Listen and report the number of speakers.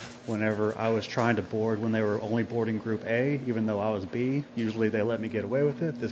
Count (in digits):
1